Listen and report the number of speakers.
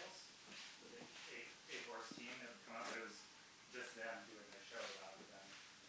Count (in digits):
1